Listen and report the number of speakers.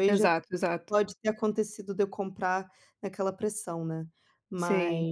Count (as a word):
two